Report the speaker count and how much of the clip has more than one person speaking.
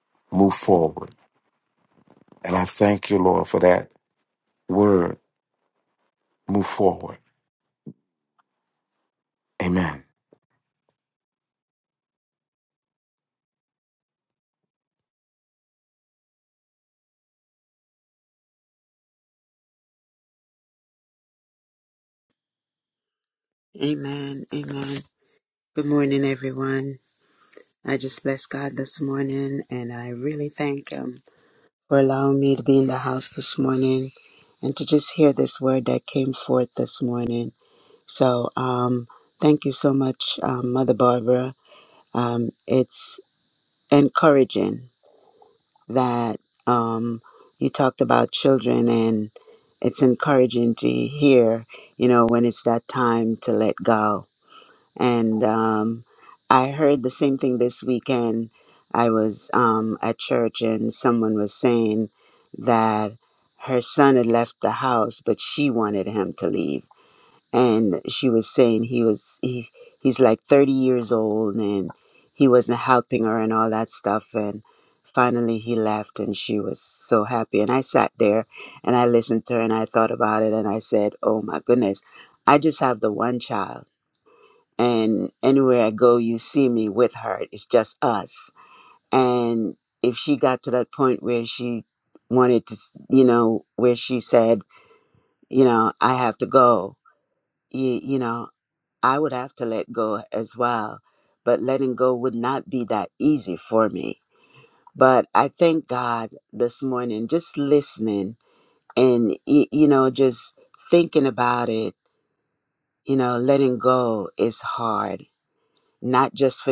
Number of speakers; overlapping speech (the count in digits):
2, no overlap